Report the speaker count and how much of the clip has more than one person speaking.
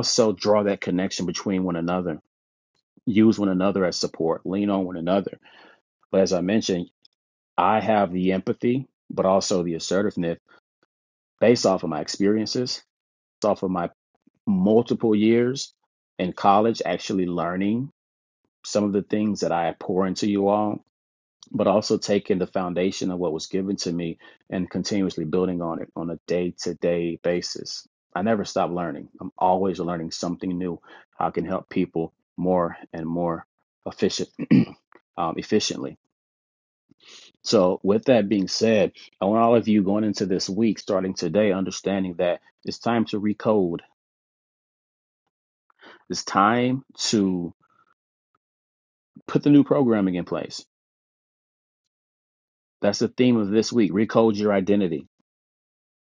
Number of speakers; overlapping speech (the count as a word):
one, no overlap